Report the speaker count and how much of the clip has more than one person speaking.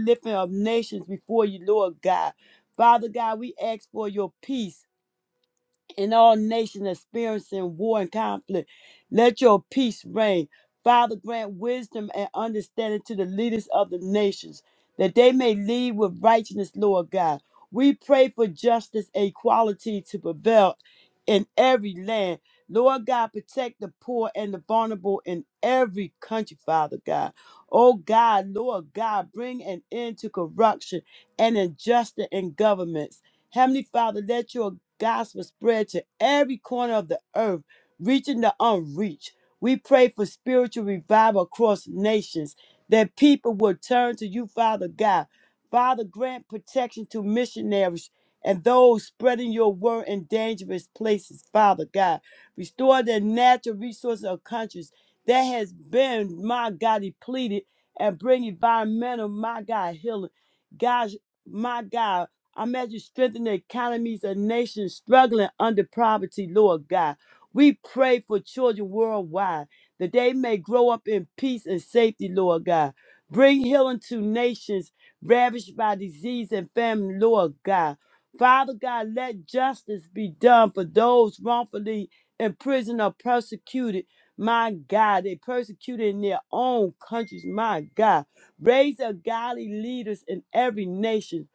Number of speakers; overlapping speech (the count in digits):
1, no overlap